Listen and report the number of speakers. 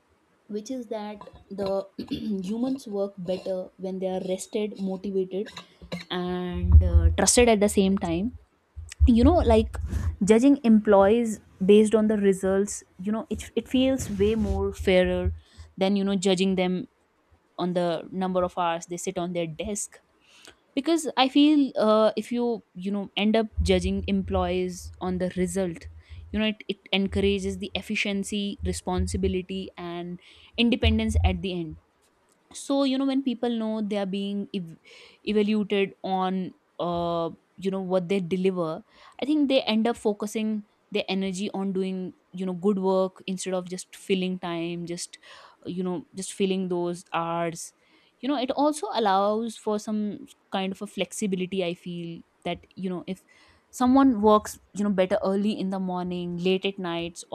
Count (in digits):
1